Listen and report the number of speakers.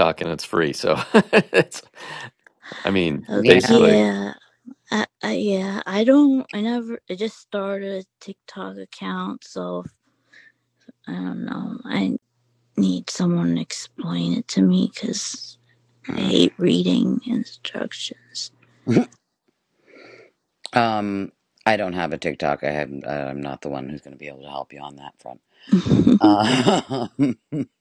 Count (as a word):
three